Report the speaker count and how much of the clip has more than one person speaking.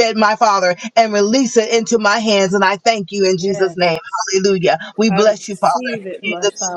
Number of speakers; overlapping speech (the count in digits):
2, about 19%